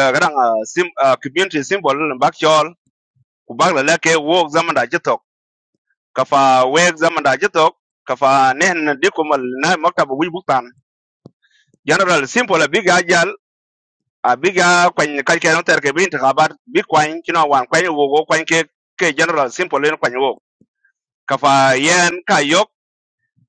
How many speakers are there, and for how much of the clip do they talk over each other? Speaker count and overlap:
1, no overlap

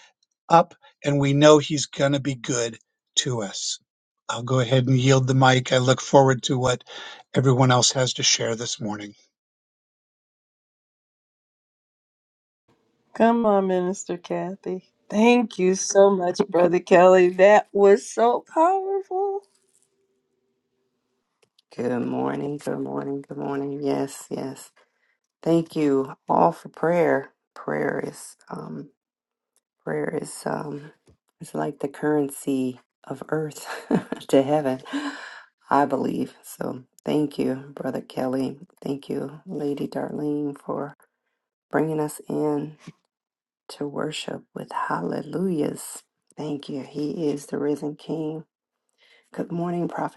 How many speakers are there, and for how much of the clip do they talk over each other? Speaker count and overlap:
3, no overlap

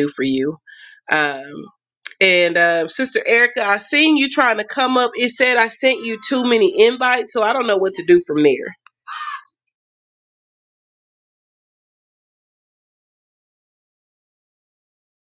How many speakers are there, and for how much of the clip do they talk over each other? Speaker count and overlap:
1, no overlap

